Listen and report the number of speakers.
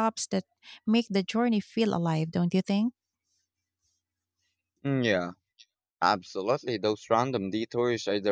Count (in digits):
2